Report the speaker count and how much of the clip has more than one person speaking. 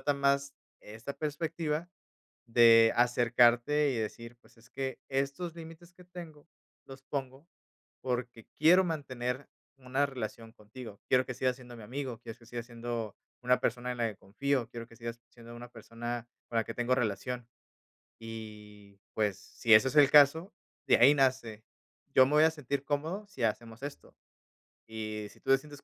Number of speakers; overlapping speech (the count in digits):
1, no overlap